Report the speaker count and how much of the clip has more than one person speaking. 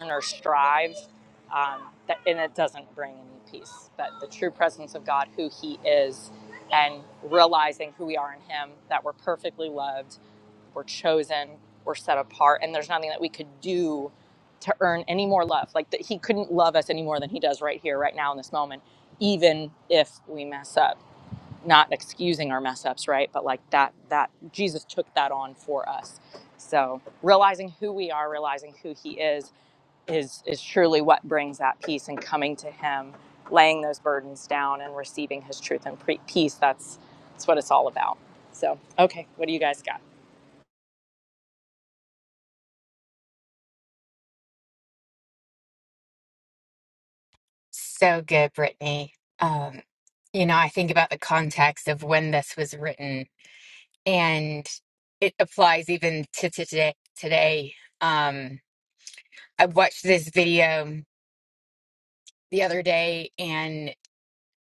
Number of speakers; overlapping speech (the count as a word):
two, no overlap